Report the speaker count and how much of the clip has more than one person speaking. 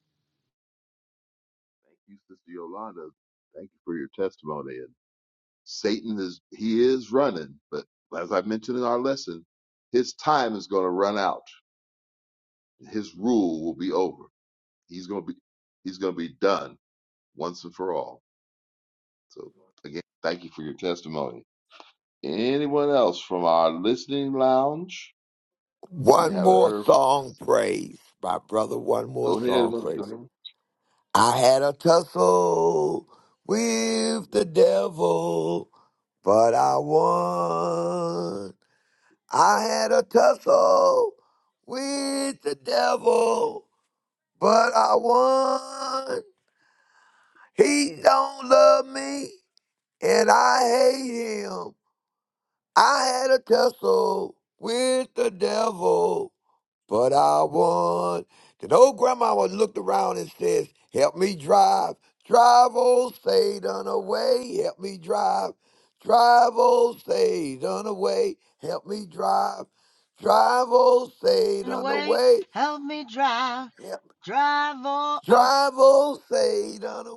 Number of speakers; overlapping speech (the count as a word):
three, about 3%